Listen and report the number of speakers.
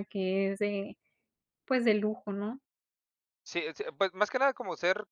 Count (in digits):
2